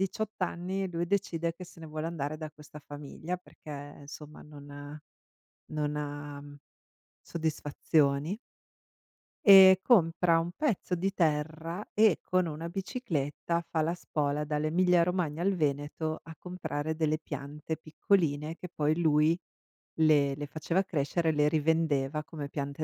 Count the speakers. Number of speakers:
1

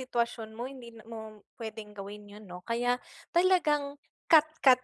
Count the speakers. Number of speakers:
1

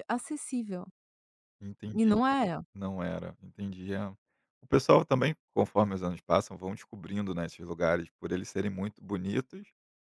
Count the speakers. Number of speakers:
2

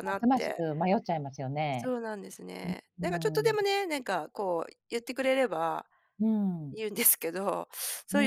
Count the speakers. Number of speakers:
2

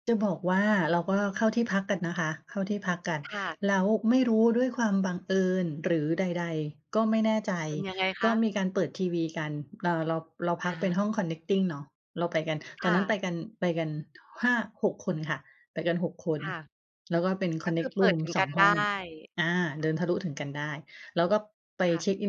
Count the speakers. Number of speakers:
2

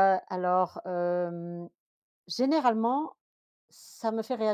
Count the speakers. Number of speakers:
1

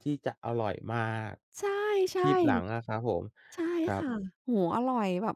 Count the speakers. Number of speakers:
2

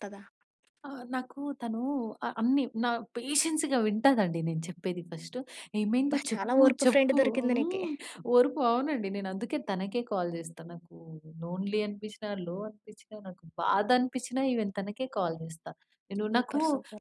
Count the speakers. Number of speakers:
2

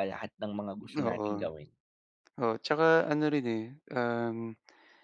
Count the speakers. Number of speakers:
2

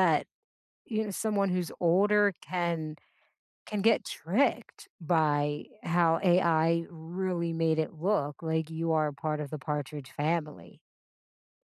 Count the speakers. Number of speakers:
1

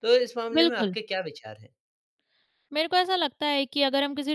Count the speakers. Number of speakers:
2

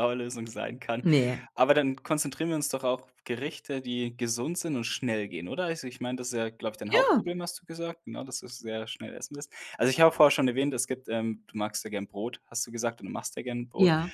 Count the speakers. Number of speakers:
2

